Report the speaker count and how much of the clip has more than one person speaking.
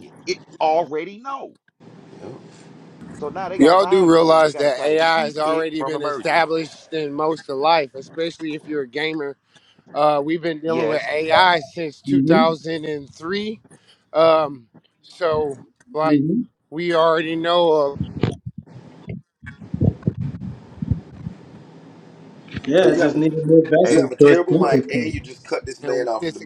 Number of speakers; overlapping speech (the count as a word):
four, about 22%